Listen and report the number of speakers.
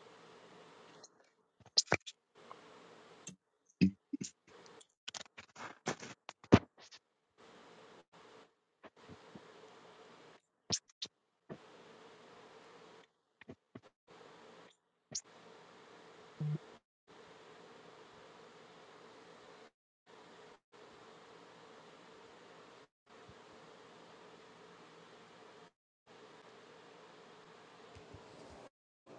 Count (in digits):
0